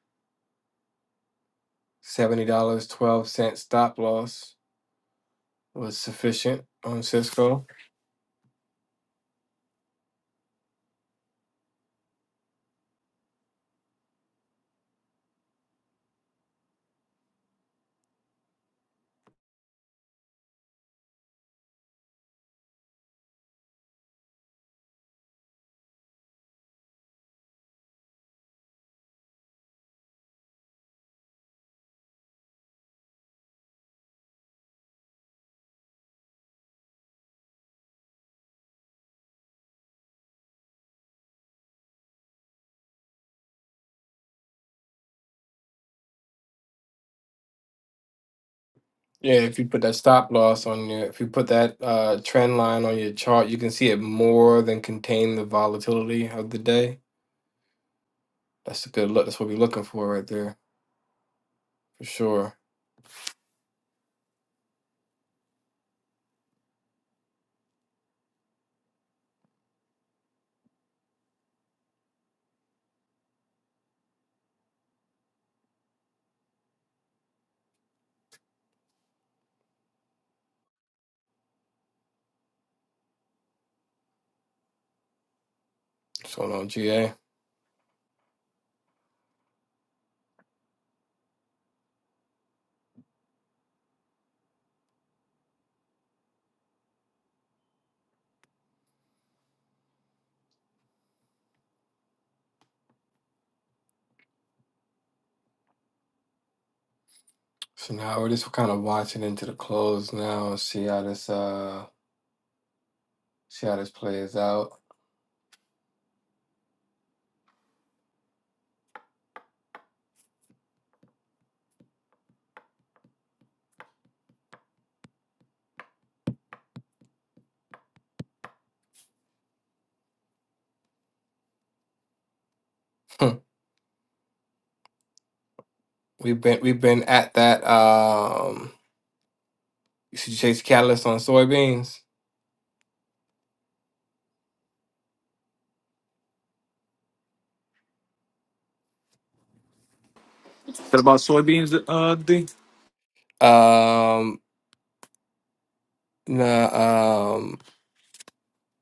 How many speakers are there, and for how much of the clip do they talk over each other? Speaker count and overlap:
2, no overlap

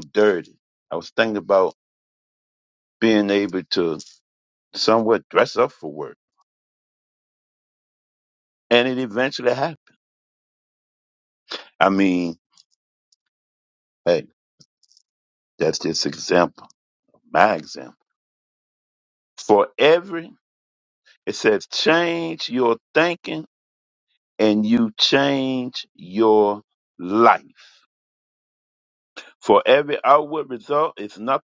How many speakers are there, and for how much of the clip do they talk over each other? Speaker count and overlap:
1, no overlap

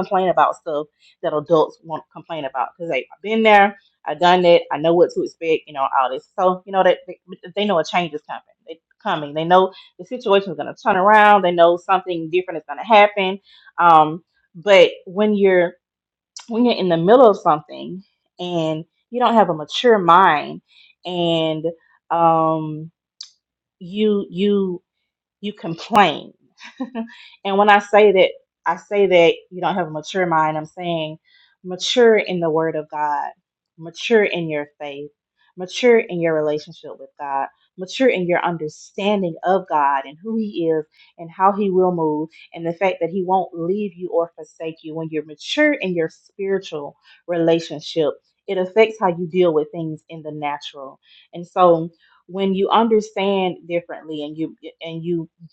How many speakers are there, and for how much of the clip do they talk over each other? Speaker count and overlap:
1, no overlap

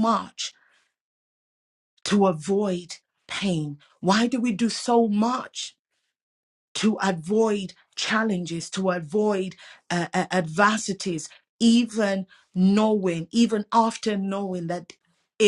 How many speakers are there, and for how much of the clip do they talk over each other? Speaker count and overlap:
1, no overlap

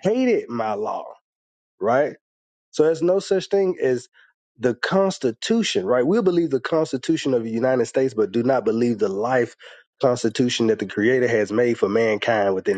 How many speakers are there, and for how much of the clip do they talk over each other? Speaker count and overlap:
1, no overlap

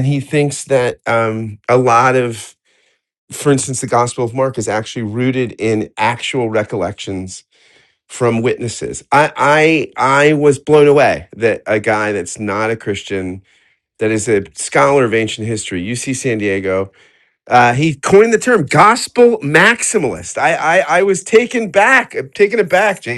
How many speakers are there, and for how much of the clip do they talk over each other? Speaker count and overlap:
1, no overlap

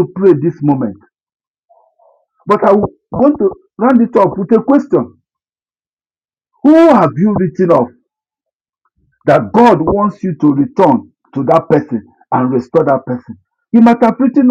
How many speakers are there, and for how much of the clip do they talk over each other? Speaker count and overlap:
1, no overlap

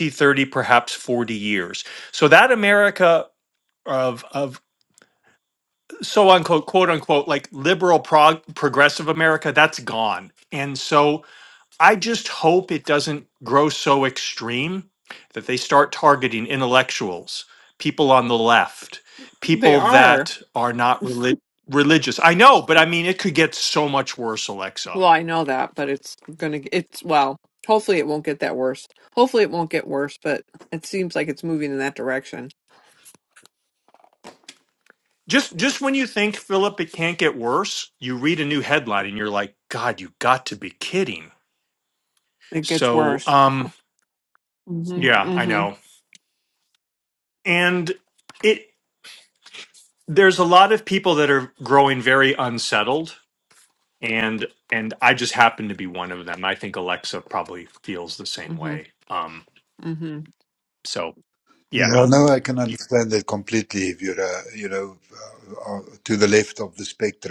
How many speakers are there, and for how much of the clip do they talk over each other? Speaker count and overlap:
3, about 4%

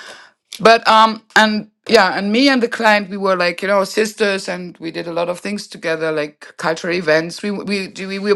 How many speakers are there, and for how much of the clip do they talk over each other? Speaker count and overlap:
1, no overlap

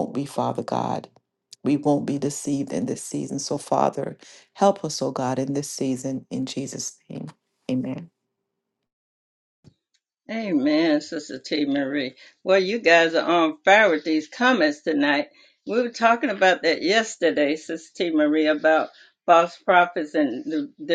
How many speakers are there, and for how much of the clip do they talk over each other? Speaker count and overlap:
2, no overlap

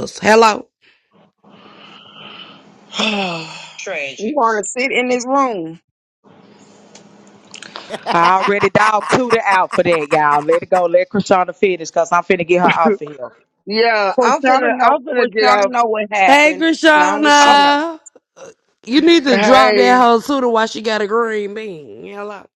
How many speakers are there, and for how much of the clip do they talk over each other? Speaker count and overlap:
4, about 17%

